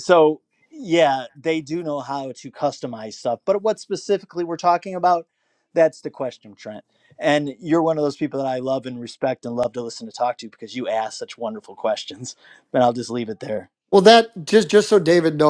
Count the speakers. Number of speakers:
two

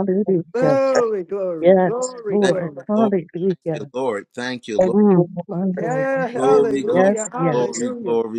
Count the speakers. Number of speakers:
three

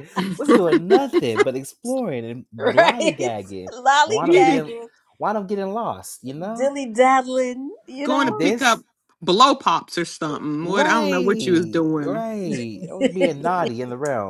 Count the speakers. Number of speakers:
three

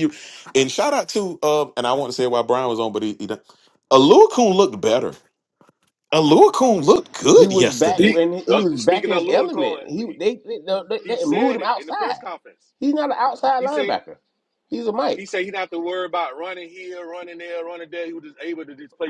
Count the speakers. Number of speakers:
three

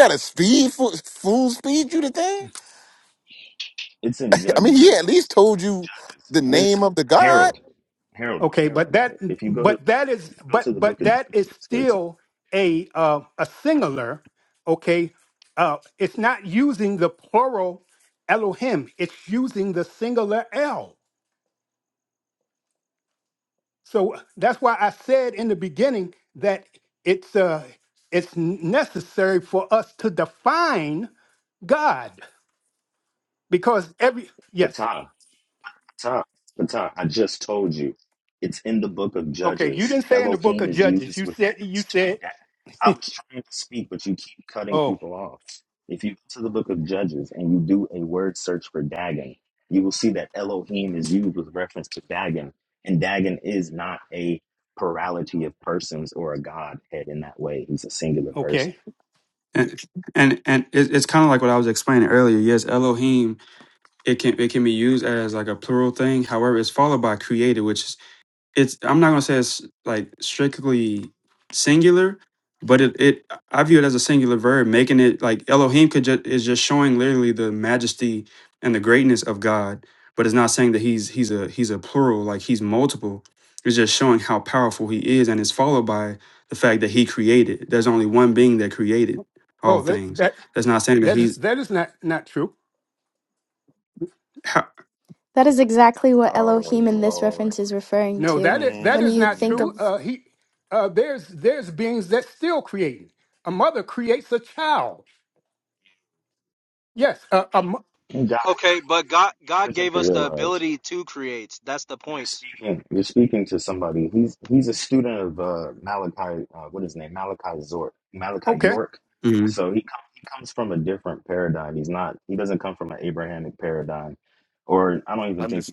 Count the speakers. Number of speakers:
six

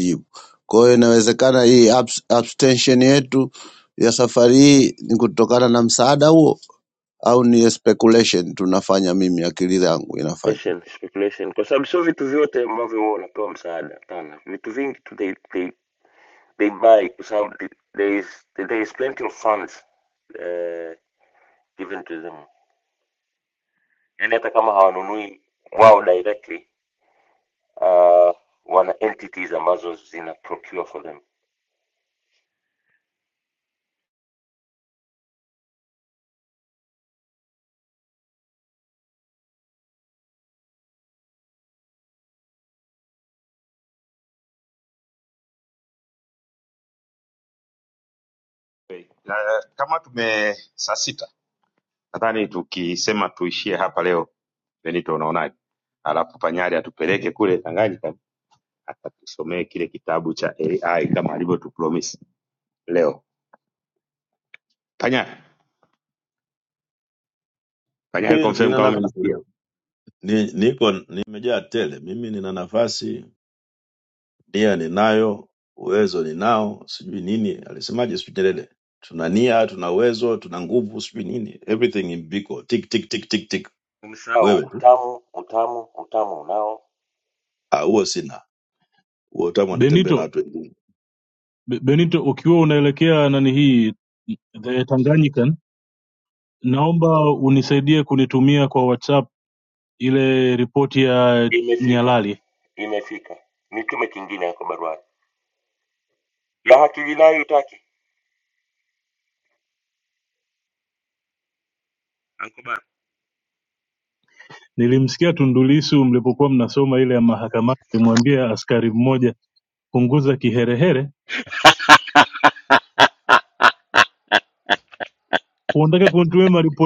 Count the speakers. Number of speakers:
five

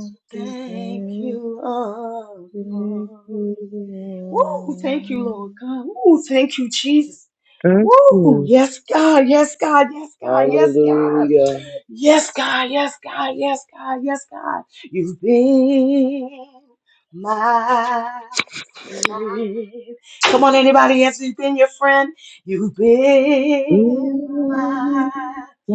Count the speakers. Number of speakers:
three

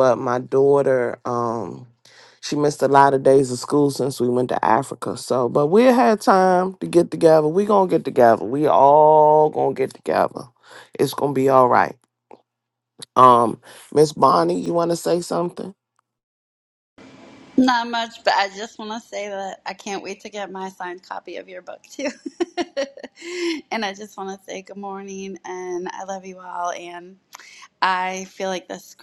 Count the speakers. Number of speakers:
two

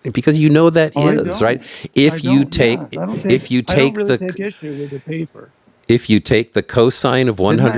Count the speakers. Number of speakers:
two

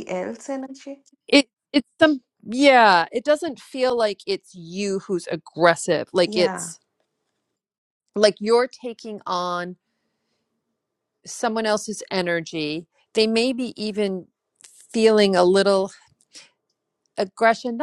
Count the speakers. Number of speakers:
two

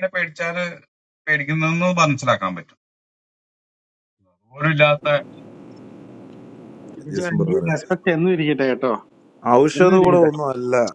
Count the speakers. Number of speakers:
three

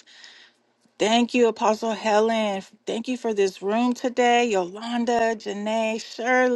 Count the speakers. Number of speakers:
one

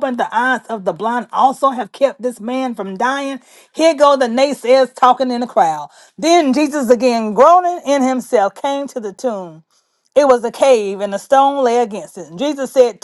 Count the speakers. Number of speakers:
one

